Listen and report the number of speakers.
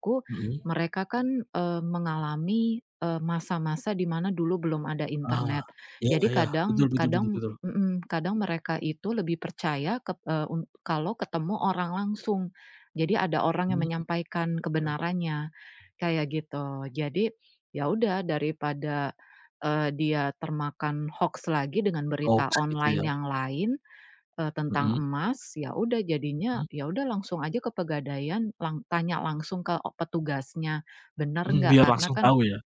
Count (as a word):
two